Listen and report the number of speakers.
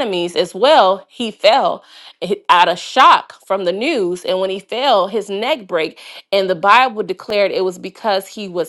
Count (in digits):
1